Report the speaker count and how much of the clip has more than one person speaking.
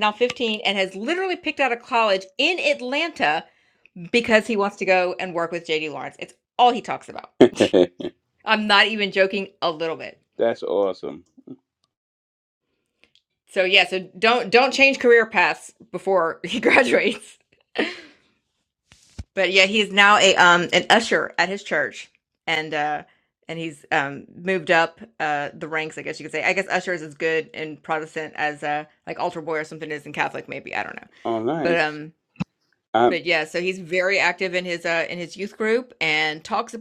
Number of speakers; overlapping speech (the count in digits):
2, about 1%